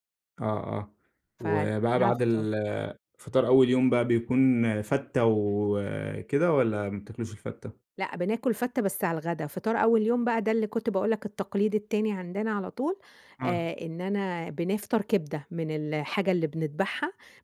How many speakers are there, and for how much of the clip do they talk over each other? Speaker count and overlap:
two, about 5%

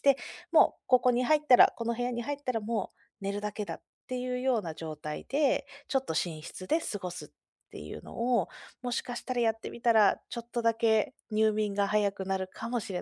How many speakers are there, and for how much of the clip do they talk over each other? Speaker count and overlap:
one, no overlap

